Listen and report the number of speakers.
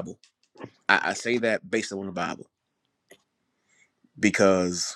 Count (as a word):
one